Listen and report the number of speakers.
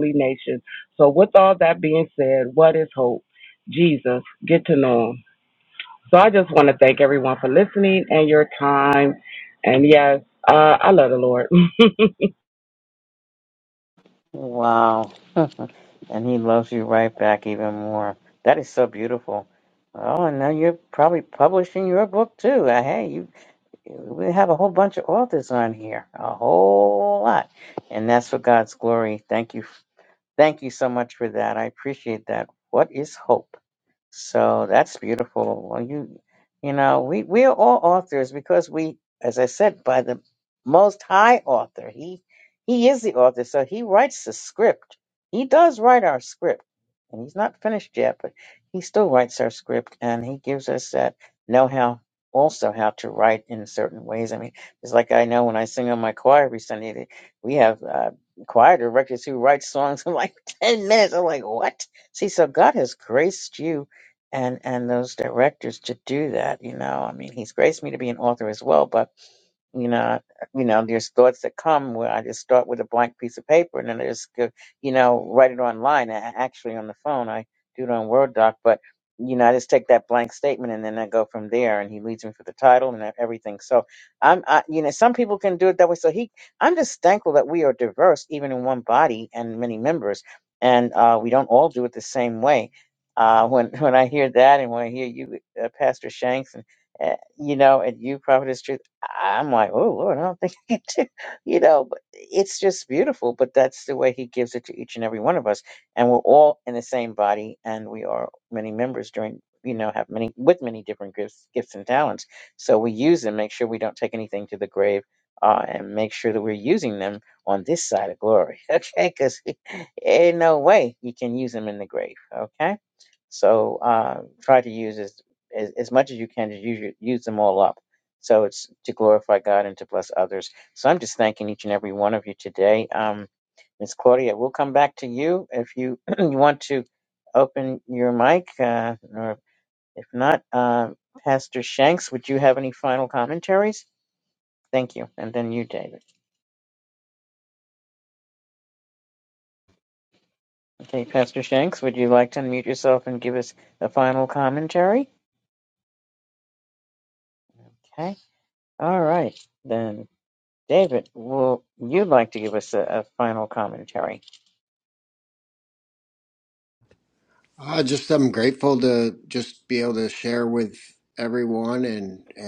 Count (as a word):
three